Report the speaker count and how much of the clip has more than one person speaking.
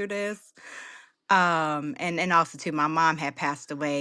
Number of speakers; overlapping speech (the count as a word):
one, no overlap